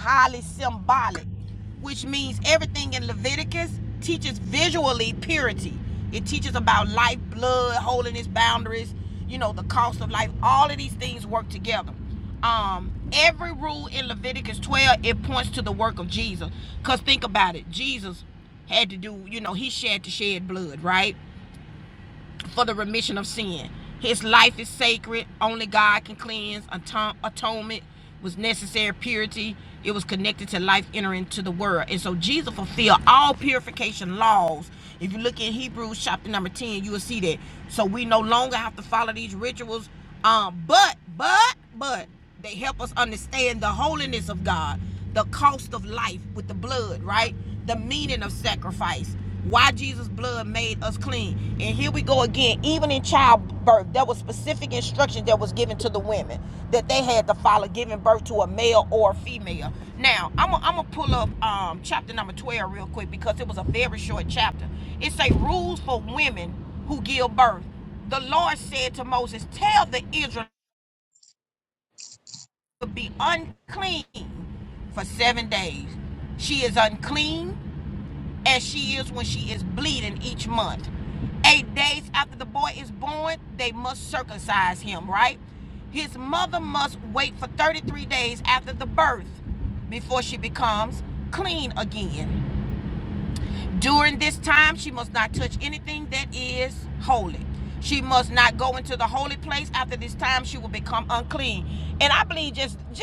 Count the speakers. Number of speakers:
one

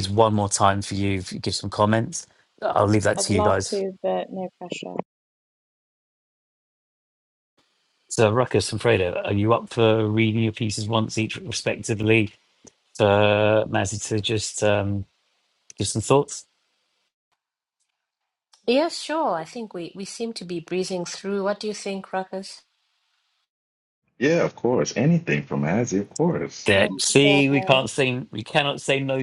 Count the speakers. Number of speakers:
four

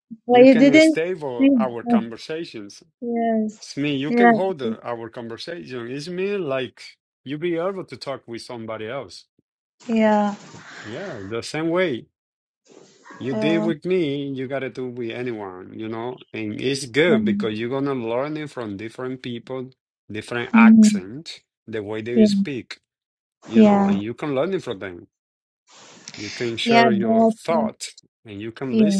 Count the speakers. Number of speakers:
two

